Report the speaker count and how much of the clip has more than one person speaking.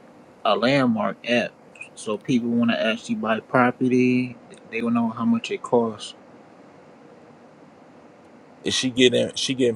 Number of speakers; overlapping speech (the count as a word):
two, no overlap